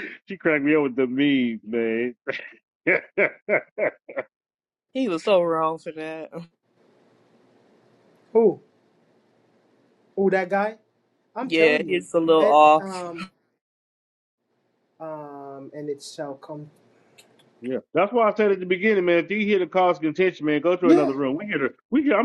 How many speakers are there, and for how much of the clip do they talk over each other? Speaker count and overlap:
3, about 6%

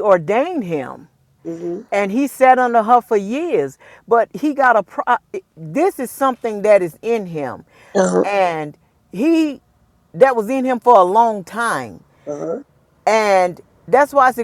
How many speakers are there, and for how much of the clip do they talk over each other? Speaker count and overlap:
2, under 1%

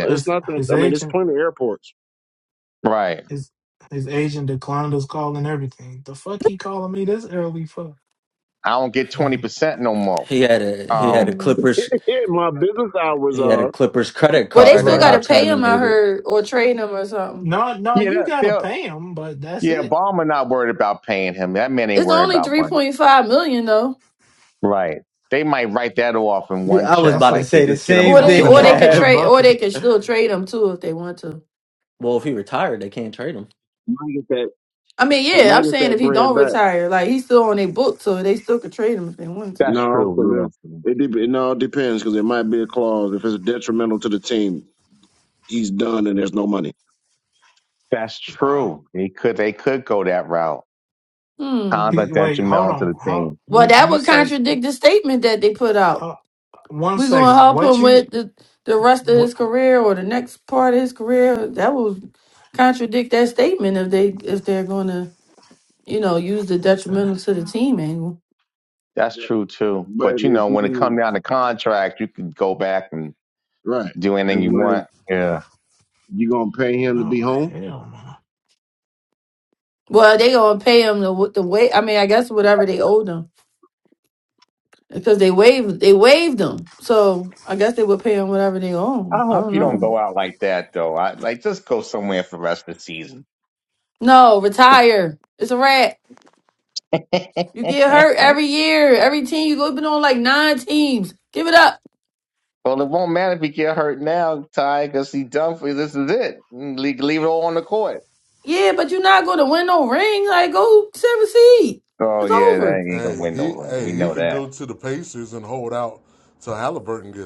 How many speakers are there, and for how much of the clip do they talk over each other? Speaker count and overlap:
6, about 18%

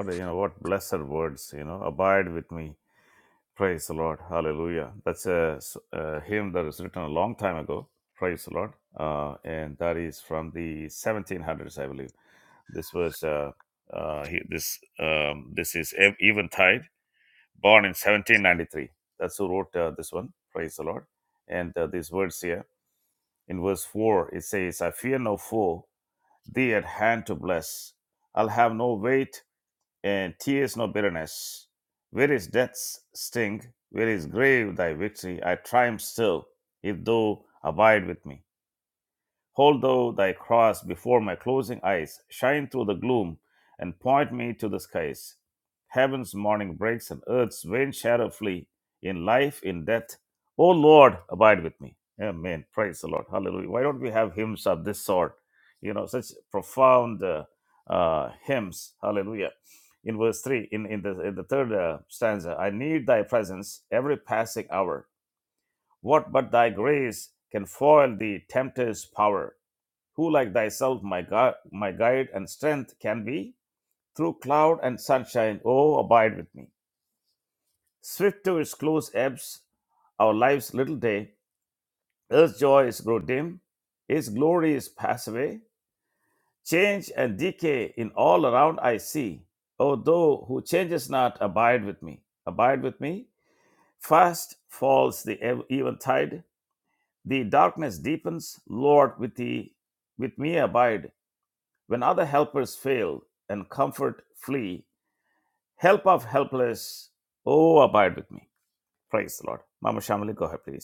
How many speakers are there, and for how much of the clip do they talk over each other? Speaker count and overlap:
1, no overlap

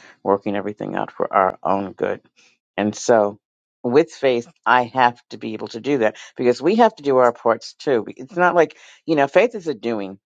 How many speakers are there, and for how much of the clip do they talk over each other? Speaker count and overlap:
1, no overlap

